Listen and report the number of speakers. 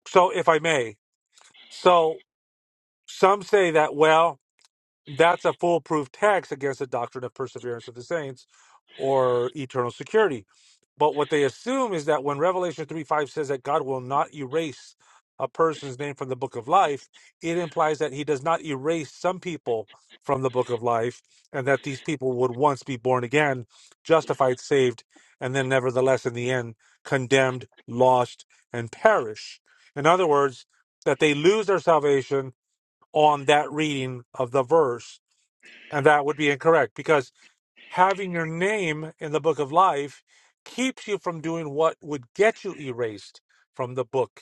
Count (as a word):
one